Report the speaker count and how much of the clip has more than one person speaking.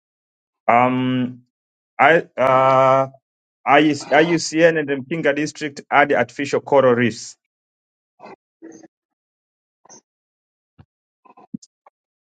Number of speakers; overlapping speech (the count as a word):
one, no overlap